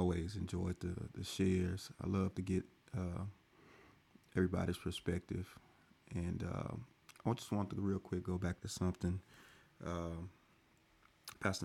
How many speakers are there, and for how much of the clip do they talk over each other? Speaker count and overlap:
1, no overlap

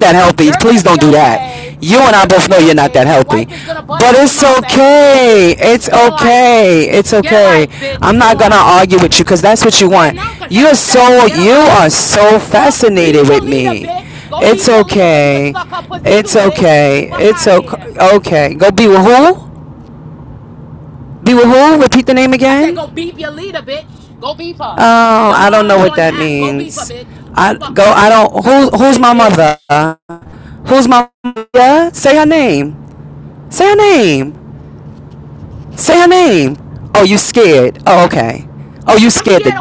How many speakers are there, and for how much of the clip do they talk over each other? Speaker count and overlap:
2, about 38%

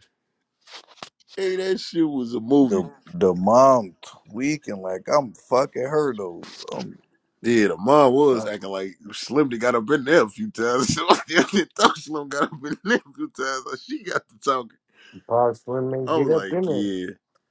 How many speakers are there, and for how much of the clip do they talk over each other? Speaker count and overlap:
3, about 6%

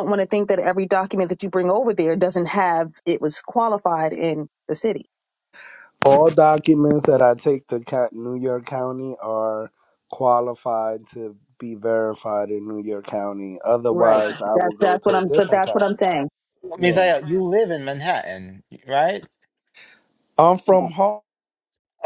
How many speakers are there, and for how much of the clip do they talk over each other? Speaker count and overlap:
3, about 11%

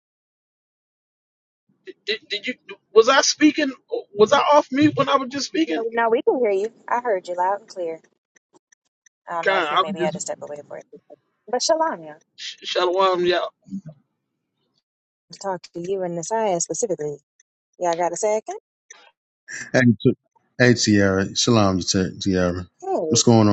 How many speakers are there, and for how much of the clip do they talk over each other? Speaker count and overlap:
3, about 4%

